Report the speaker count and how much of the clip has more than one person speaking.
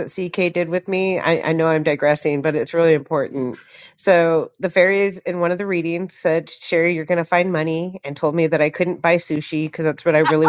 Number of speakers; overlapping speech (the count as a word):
one, no overlap